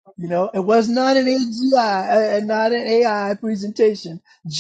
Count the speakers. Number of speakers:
1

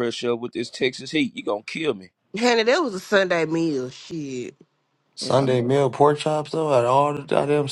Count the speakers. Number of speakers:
3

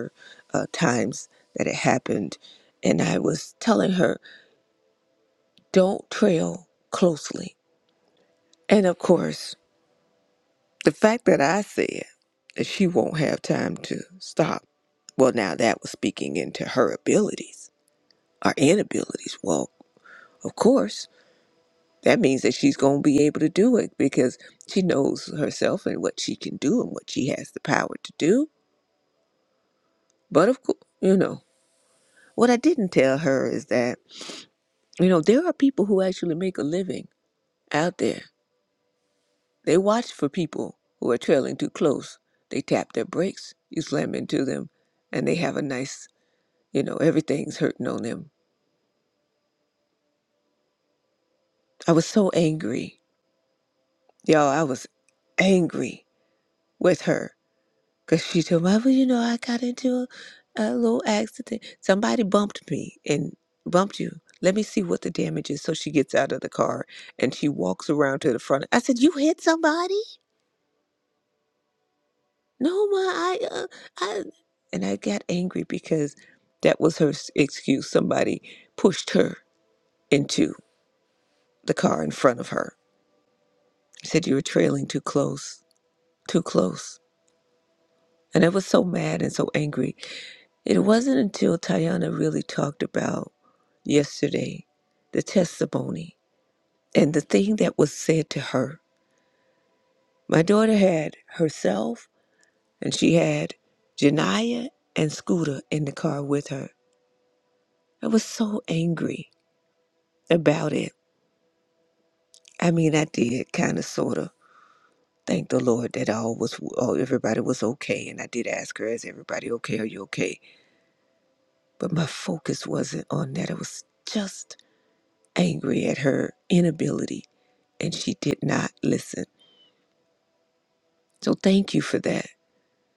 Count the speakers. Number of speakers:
1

